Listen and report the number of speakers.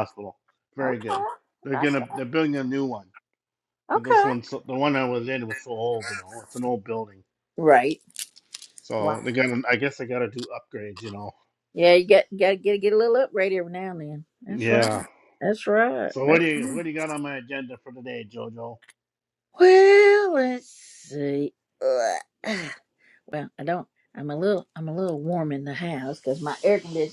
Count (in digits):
2